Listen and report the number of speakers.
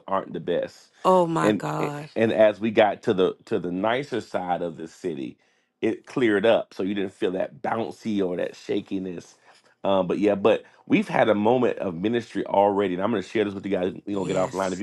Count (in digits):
2